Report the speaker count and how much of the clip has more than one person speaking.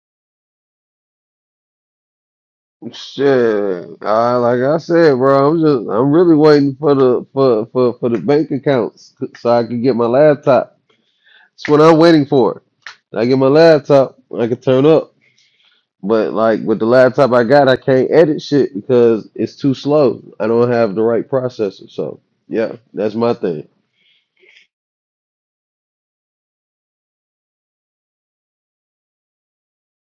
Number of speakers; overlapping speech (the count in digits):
1, no overlap